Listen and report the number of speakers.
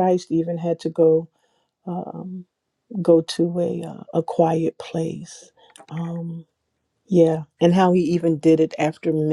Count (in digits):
1